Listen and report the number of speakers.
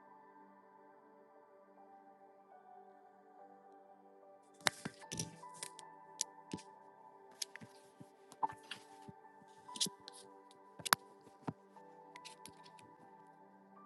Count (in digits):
0